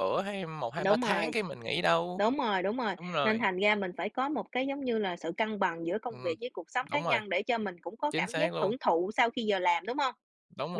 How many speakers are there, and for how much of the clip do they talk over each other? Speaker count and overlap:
two, about 20%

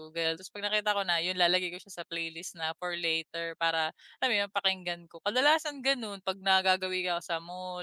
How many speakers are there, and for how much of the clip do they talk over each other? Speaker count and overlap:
one, no overlap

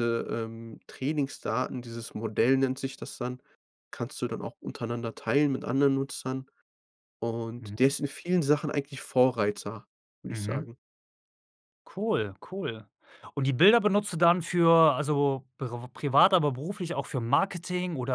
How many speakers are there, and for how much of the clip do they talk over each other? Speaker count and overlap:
two, about 3%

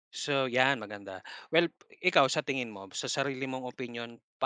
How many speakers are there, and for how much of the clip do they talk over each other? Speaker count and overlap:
one, no overlap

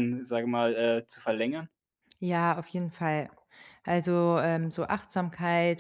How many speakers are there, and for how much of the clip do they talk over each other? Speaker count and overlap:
two, no overlap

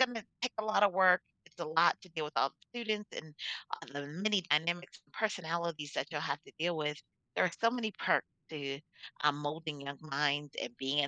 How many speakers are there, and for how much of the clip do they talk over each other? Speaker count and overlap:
one, no overlap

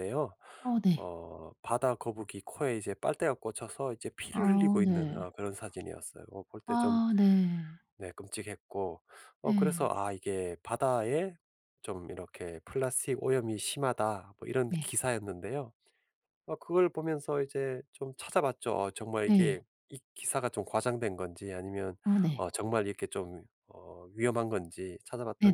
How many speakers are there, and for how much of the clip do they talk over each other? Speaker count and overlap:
two, about 8%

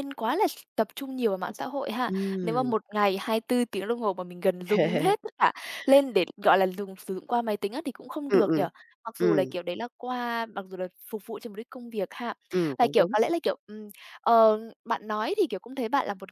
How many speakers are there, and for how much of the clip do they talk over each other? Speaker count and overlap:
two, about 9%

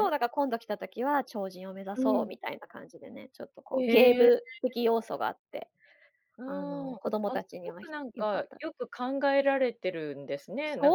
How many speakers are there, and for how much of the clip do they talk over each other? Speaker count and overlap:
two, about 17%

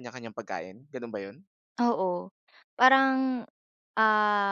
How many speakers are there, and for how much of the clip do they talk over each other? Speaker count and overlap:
two, no overlap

